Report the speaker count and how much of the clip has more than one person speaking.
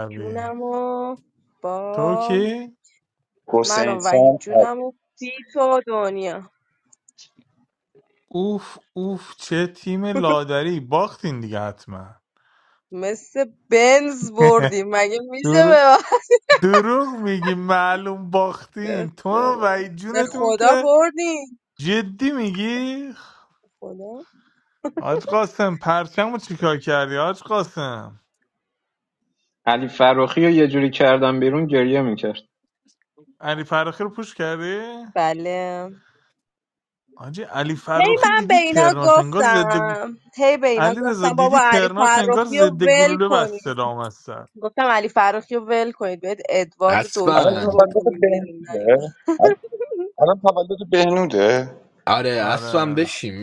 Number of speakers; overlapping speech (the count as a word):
five, about 21%